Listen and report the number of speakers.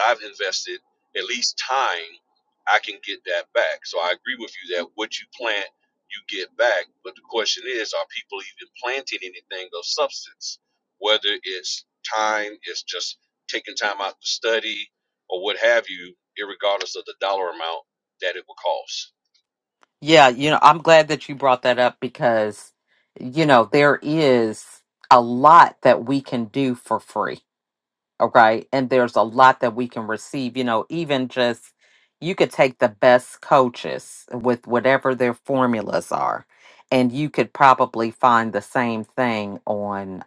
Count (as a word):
two